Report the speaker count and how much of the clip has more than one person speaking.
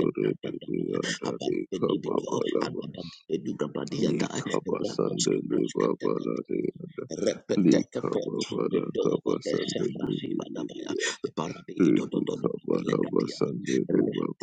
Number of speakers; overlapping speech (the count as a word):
two, about 54%